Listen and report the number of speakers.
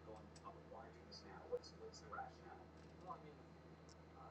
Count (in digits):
0